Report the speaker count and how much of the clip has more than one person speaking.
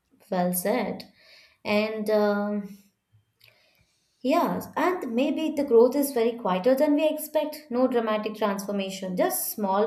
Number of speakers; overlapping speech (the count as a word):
one, no overlap